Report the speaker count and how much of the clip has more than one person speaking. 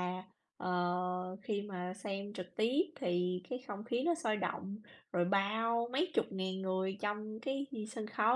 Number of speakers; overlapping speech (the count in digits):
1, no overlap